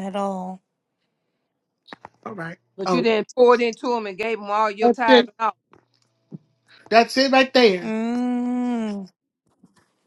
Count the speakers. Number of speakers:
3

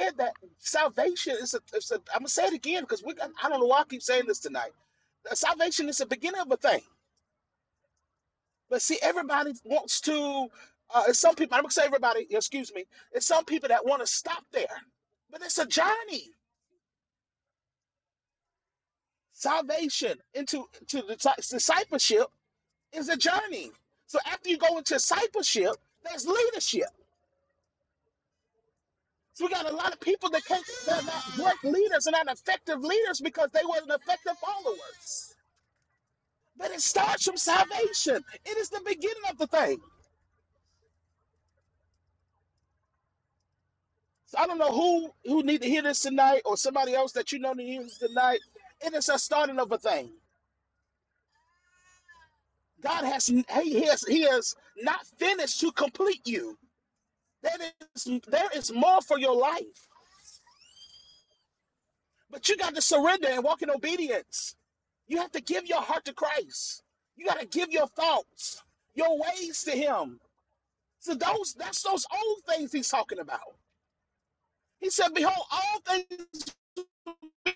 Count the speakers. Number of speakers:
1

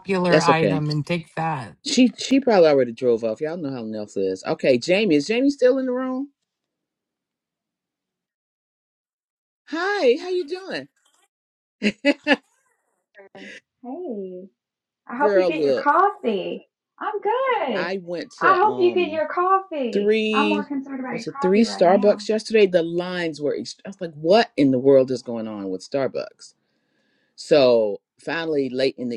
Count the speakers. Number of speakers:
3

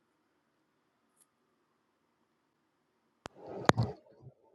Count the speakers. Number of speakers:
0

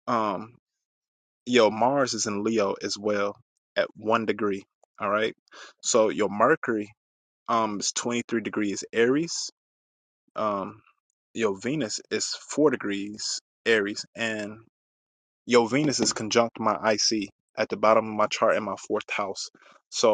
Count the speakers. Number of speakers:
1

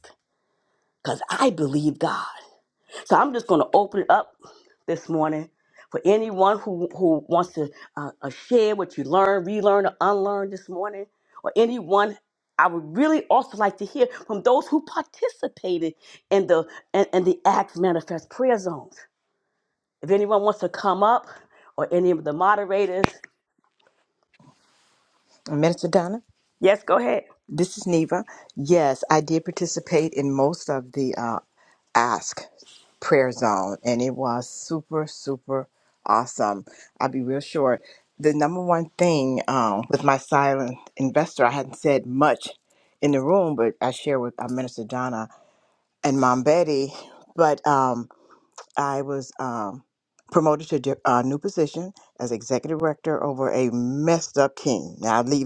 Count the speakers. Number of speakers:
2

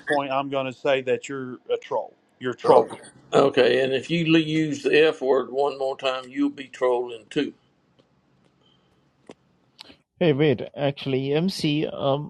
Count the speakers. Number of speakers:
3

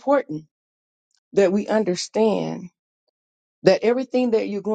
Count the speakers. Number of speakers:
1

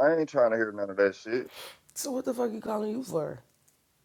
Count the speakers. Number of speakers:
2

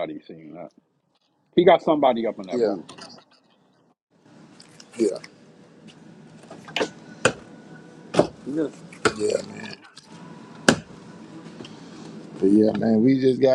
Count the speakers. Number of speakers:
2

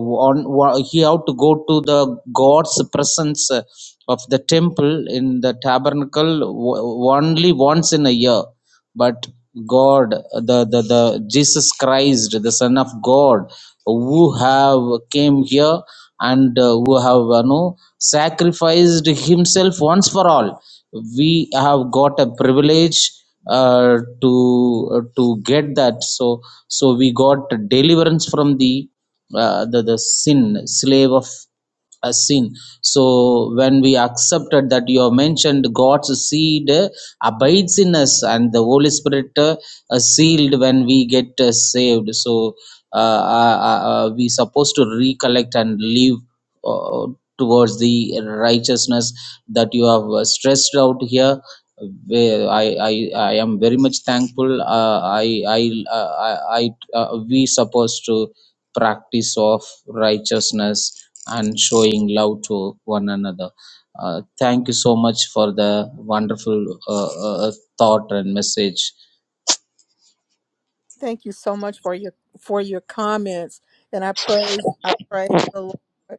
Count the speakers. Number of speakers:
2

